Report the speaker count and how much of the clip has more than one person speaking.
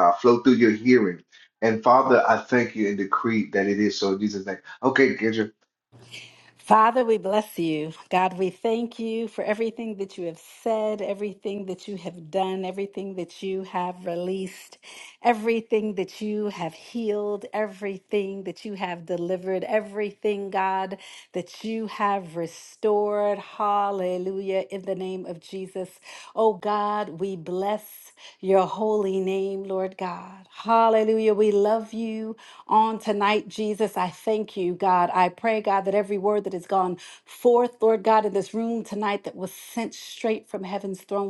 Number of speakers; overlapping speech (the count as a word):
two, no overlap